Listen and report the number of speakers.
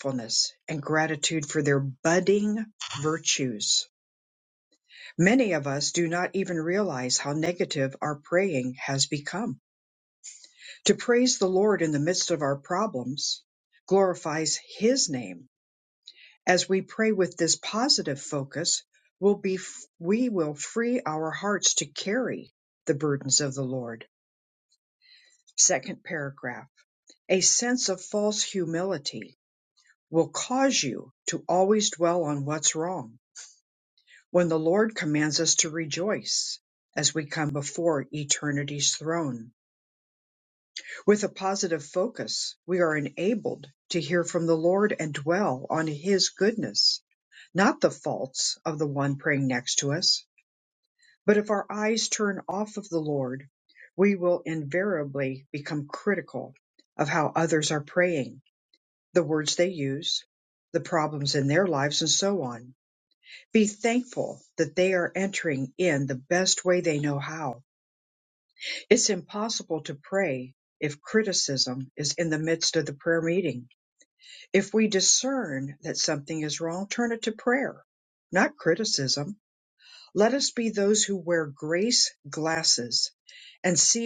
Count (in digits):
1